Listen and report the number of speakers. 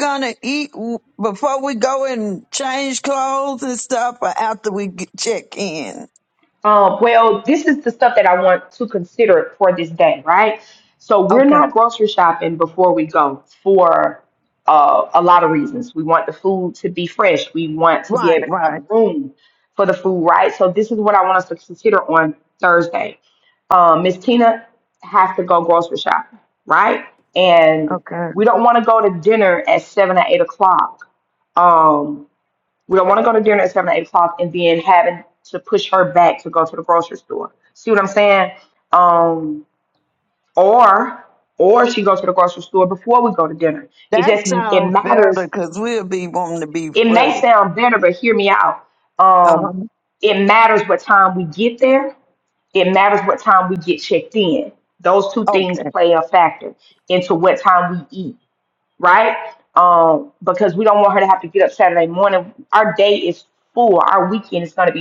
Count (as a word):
two